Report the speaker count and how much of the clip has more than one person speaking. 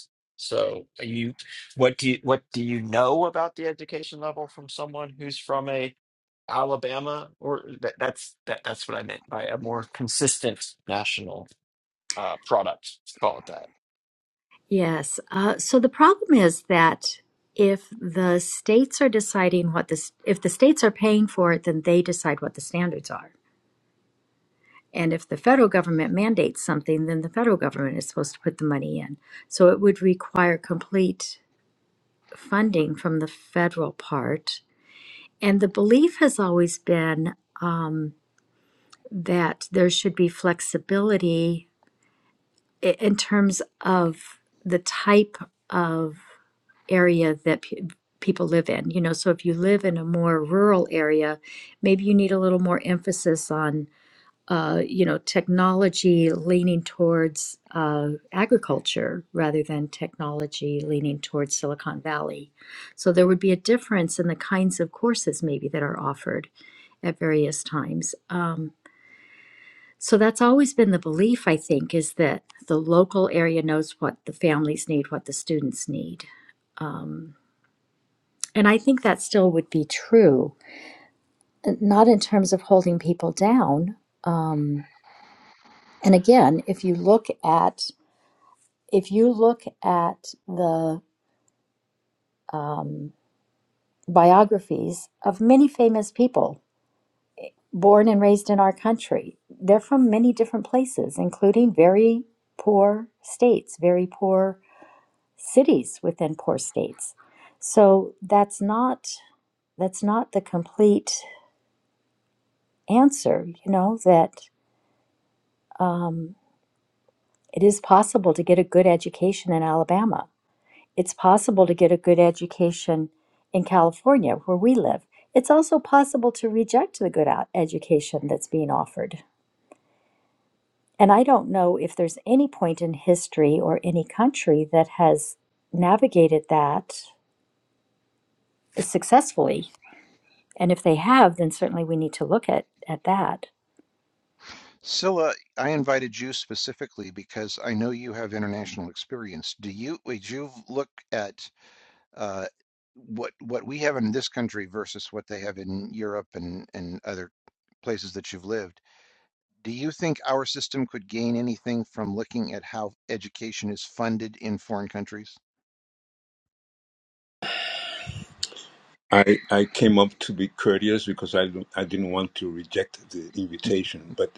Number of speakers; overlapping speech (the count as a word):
four, no overlap